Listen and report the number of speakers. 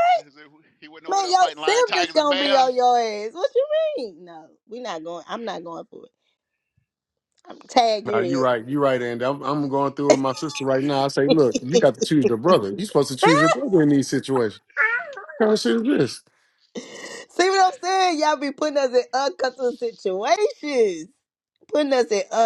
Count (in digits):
3